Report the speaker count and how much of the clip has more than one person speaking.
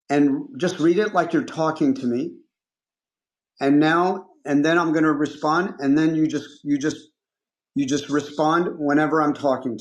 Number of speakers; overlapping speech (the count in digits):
1, no overlap